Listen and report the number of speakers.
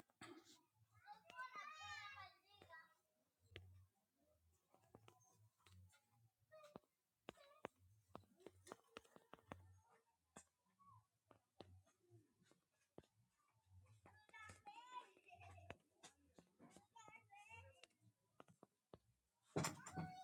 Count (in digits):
0